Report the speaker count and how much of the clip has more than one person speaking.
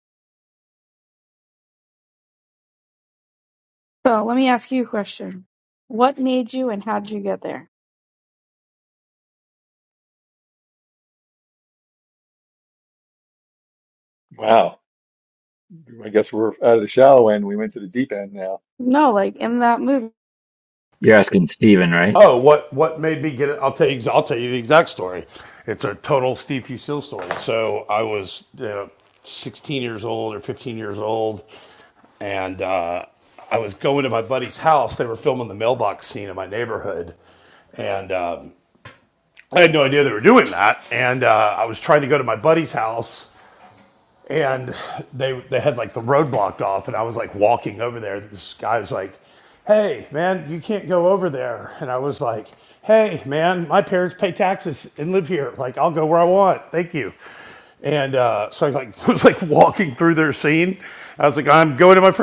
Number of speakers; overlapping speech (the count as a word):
four, no overlap